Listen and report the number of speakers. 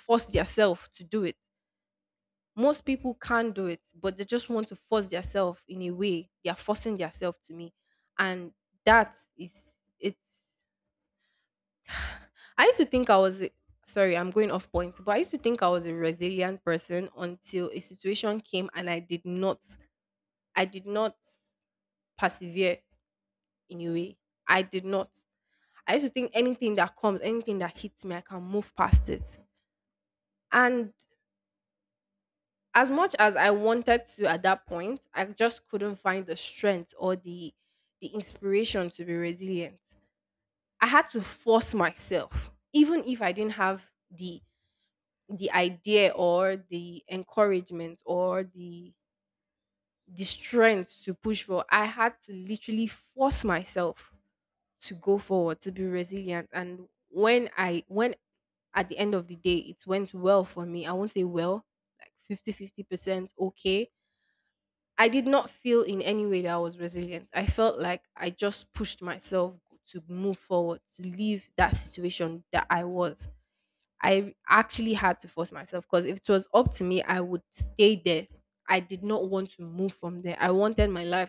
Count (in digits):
1